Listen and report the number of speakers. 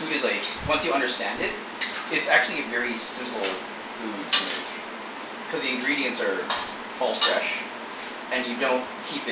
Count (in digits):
1